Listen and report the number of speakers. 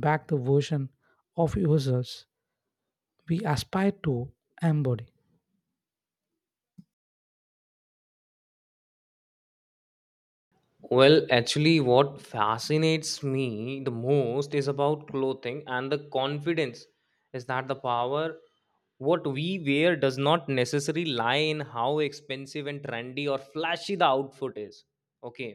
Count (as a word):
two